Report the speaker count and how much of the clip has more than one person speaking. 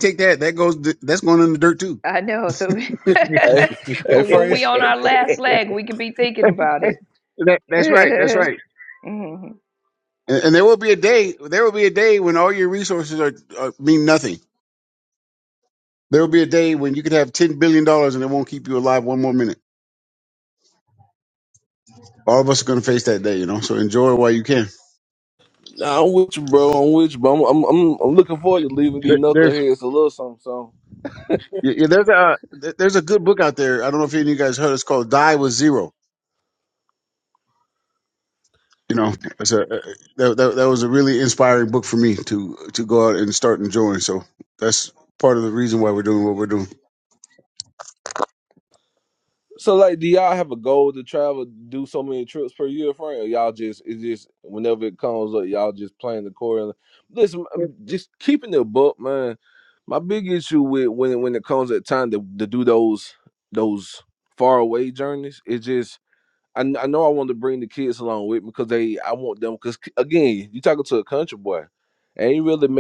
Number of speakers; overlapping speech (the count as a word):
three, about 1%